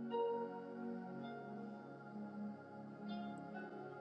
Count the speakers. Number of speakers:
0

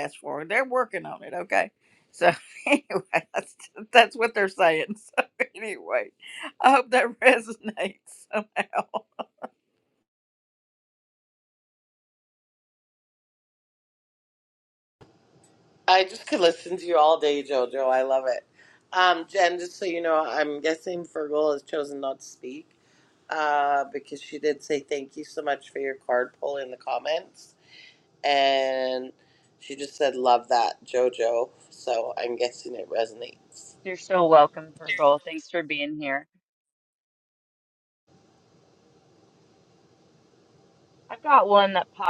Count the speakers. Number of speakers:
3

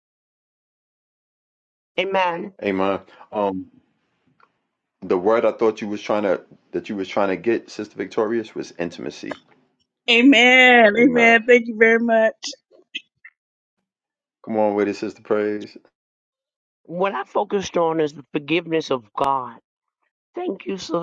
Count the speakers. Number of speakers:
3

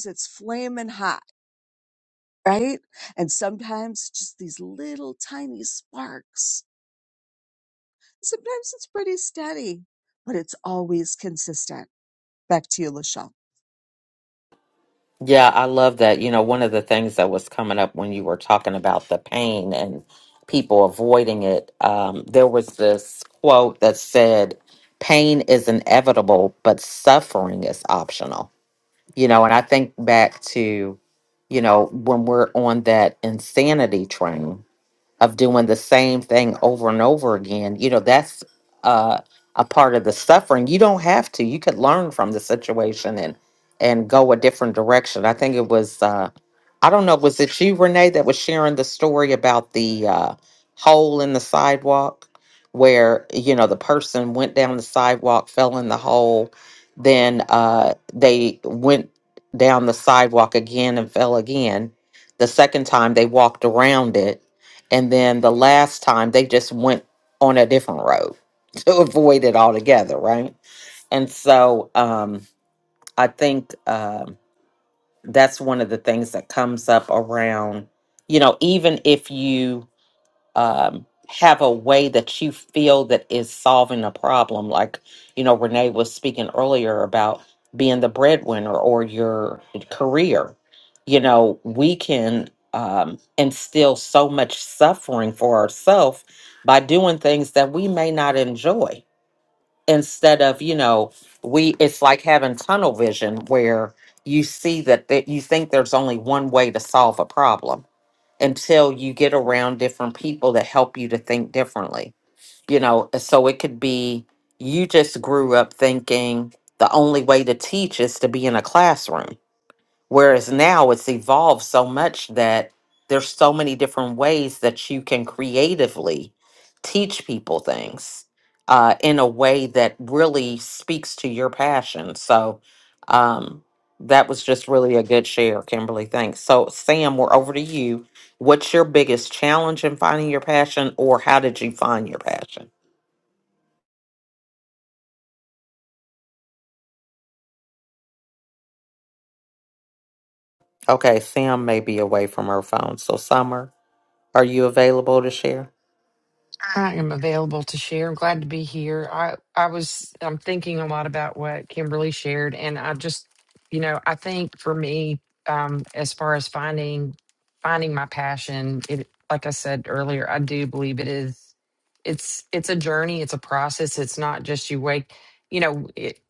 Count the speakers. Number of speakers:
3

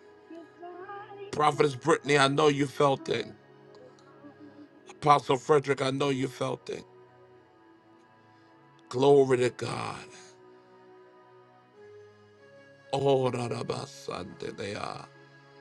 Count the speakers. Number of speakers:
2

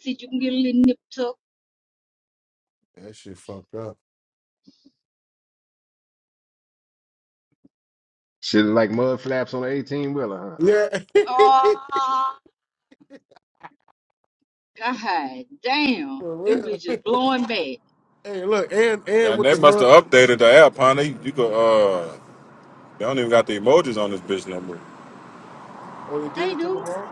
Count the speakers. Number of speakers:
4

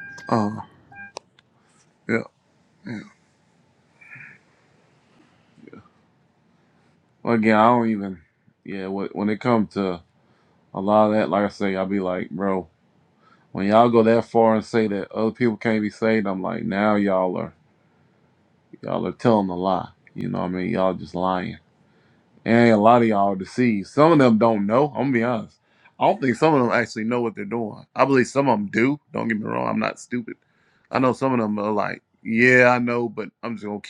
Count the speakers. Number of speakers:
1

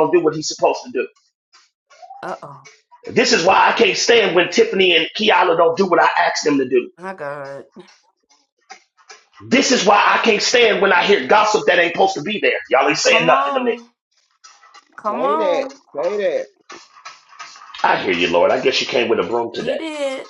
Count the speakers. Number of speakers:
3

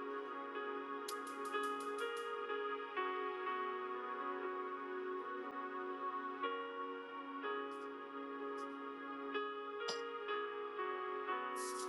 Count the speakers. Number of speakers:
0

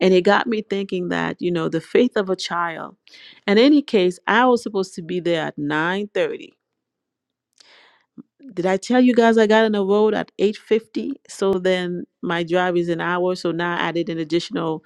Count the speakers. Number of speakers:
1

